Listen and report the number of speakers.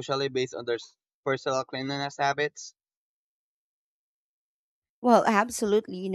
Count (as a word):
two